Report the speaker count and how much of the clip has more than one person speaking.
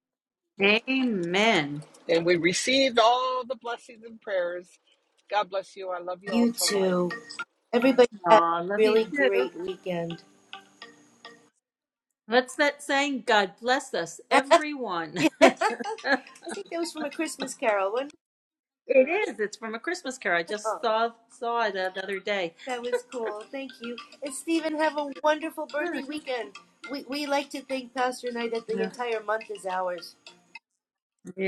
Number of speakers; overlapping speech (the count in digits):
3, about 8%